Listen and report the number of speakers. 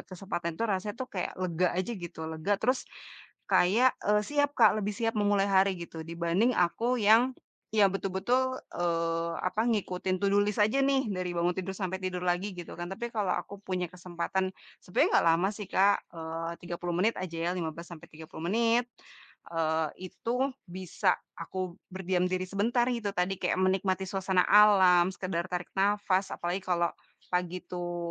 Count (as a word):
one